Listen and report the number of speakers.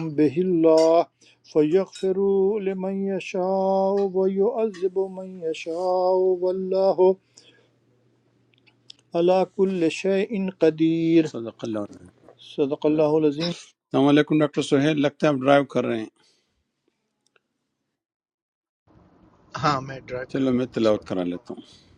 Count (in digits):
3